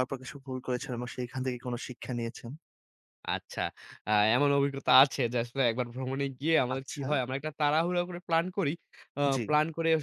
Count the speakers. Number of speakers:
2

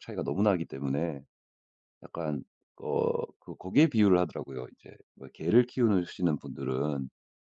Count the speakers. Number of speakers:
1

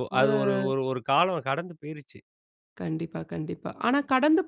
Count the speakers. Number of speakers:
2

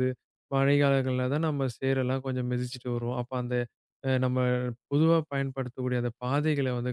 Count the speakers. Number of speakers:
1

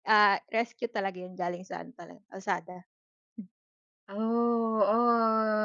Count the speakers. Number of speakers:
2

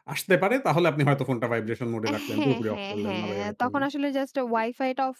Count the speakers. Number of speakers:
2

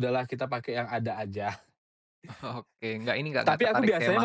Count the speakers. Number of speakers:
2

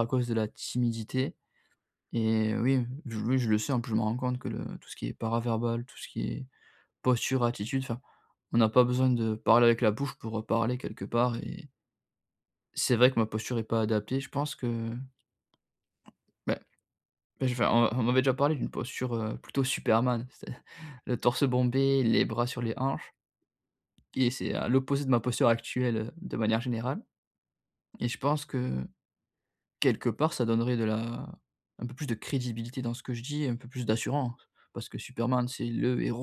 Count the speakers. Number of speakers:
1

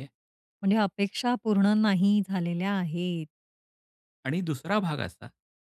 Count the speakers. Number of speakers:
2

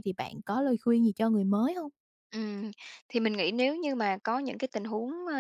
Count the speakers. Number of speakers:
2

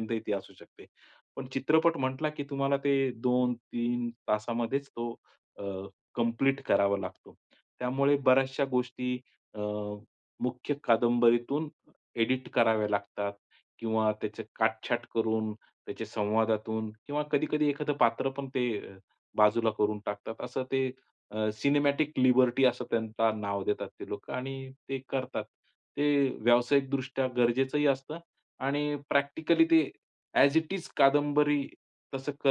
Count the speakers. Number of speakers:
1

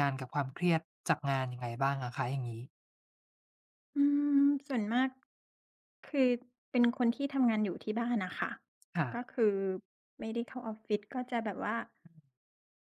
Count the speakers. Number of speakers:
2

